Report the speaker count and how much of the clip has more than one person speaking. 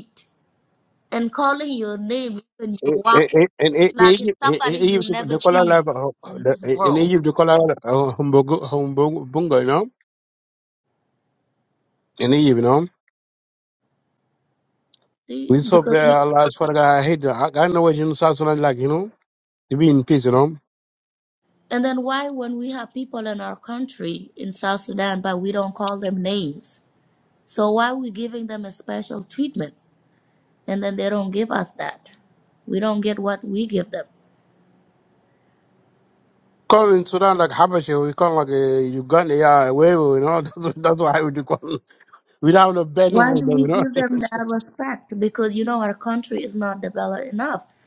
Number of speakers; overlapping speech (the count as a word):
two, about 10%